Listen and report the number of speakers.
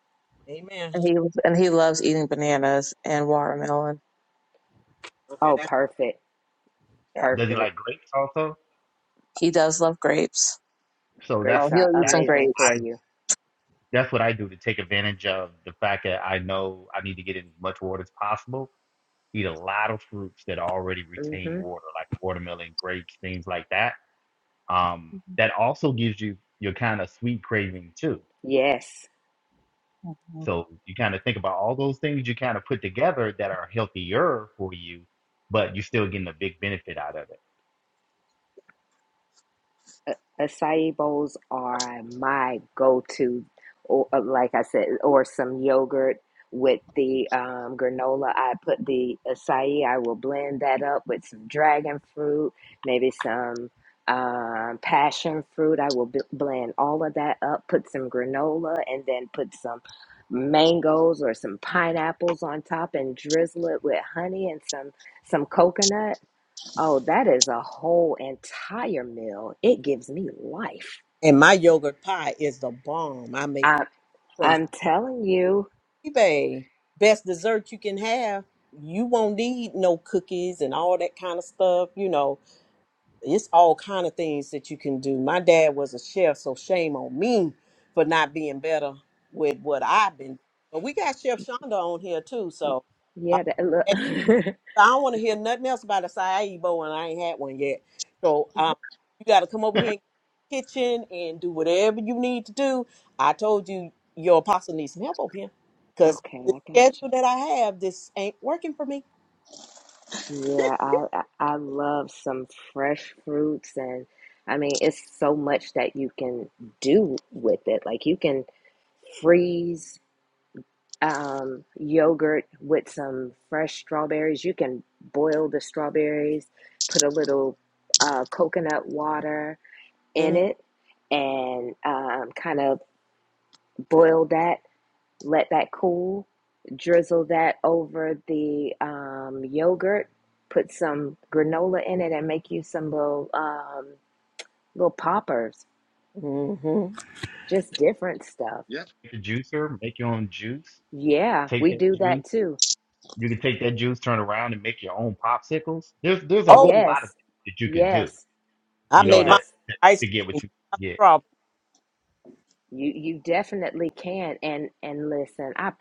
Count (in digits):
4